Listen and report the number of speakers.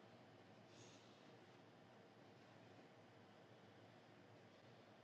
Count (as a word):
zero